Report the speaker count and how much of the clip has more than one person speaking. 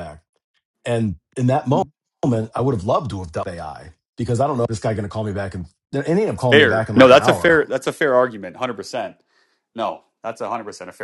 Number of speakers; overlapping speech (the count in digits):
2, about 9%